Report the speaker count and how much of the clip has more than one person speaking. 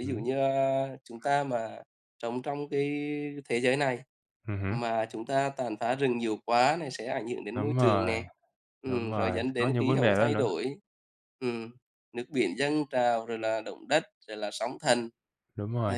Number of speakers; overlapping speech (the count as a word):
two, about 17%